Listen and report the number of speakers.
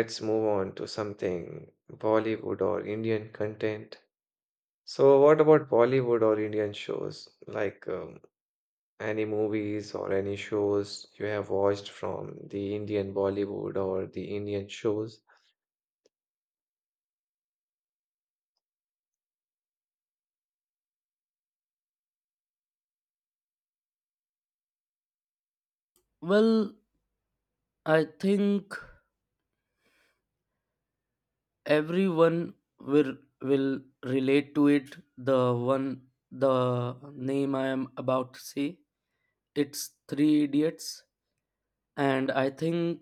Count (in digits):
2